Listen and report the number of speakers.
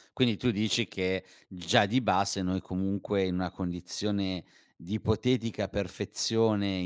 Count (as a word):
one